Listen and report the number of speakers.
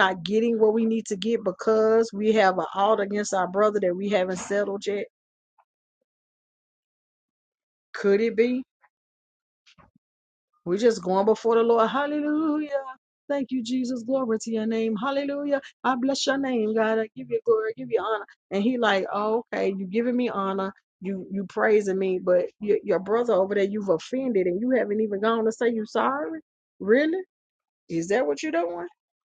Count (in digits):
1